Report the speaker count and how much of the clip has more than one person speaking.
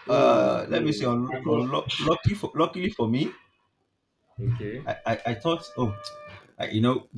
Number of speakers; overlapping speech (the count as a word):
two, about 26%